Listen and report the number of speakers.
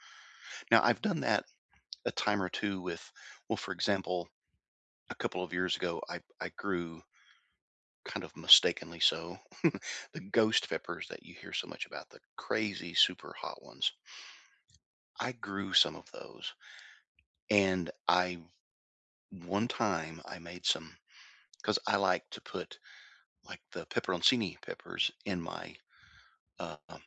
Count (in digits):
1